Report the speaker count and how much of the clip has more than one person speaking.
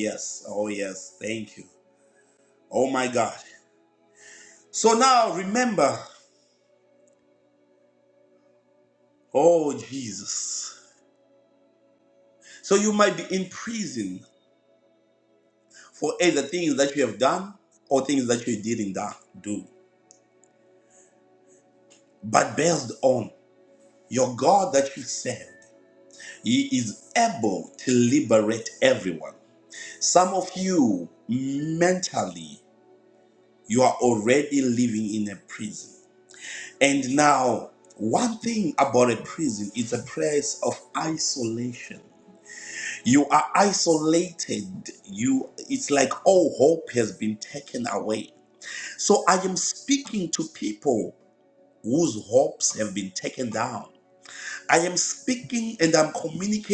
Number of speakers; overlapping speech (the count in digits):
1, no overlap